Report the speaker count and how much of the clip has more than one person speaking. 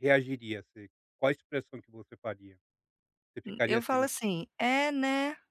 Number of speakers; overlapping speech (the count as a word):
two, about 10%